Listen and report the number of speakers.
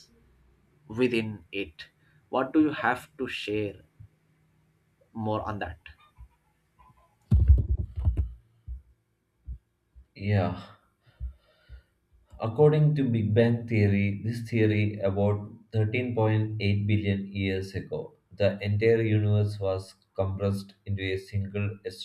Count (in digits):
2